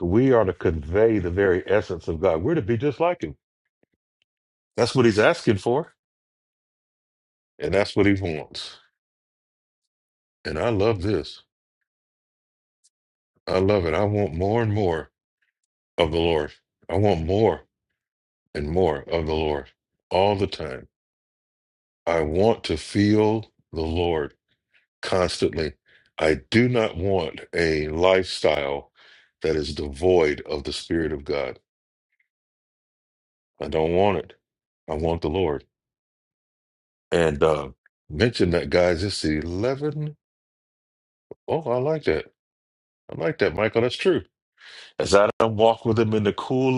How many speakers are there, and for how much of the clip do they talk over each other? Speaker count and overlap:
1, no overlap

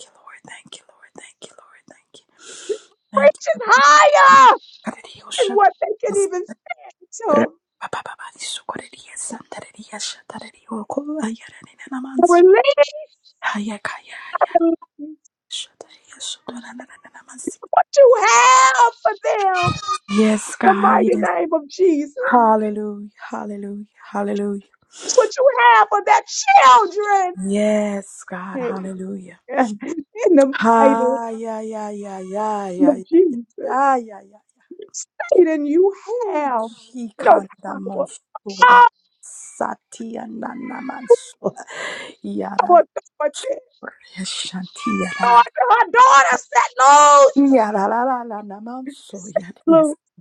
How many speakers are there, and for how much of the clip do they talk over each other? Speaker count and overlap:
2, about 10%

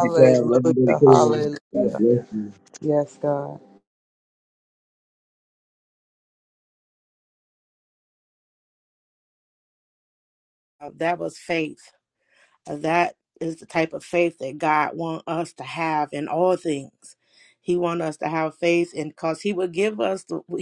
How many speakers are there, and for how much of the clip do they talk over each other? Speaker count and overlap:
3, about 8%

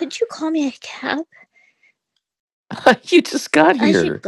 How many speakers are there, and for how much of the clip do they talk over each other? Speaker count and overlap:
2, about 9%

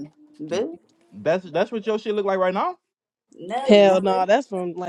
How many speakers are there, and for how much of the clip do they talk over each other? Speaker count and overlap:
3, about 12%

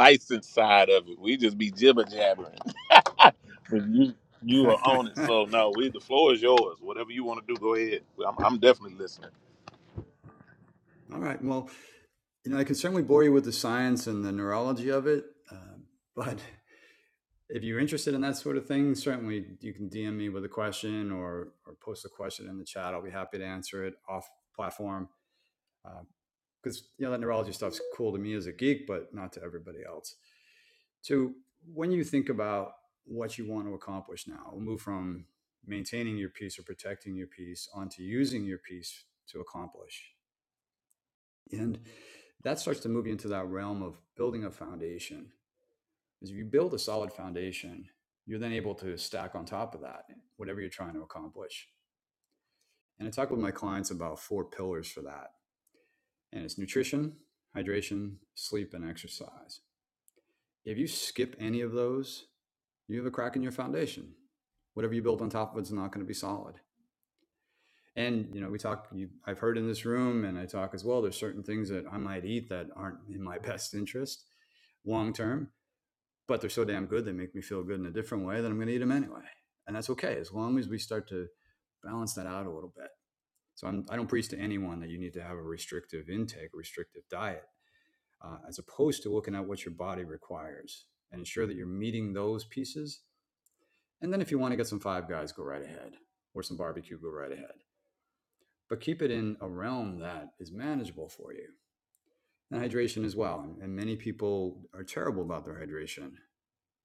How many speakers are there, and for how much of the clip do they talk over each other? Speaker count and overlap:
2, under 1%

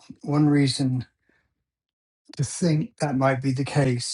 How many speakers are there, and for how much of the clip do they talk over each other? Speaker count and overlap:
1, no overlap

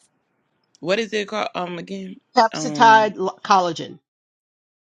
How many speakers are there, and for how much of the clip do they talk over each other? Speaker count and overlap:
2, about 12%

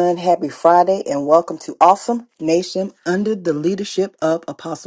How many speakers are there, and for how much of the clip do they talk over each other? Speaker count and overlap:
1, no overlap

